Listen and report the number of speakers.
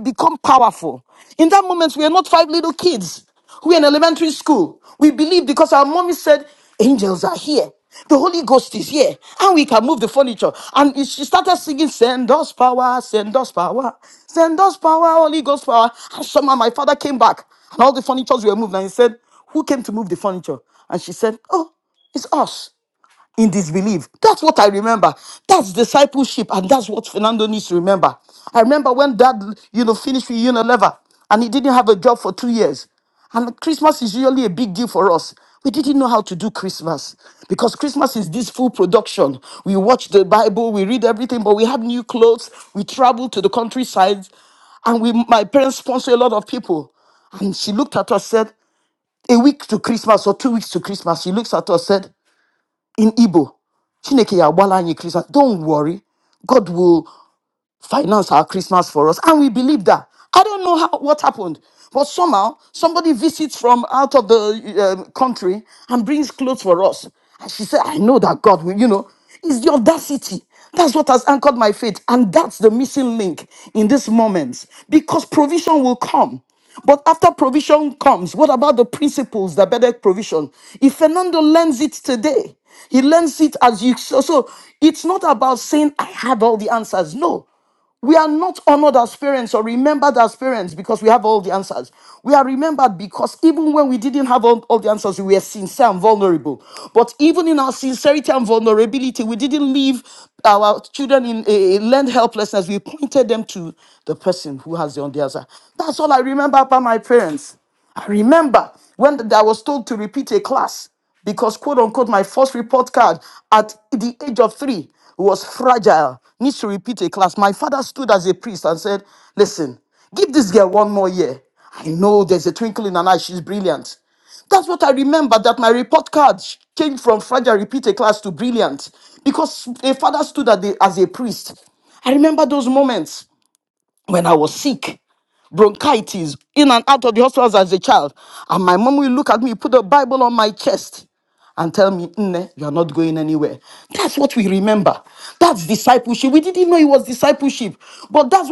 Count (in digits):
1